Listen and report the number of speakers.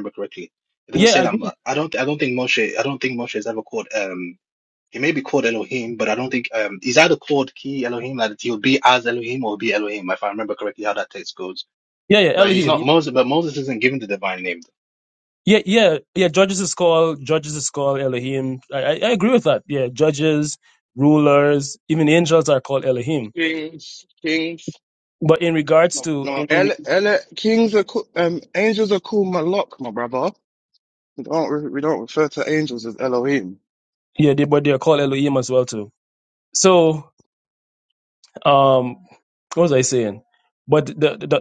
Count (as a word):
three